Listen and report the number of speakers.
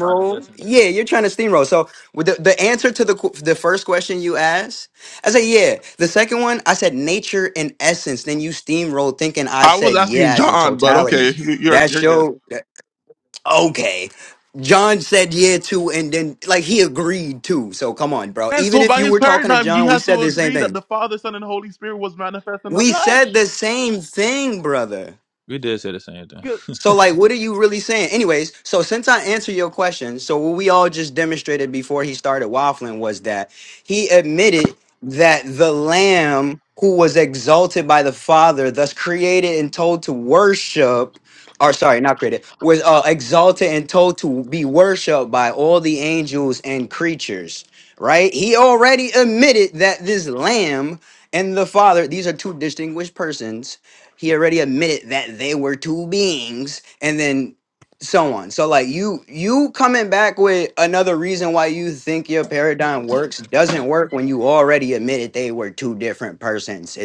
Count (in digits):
3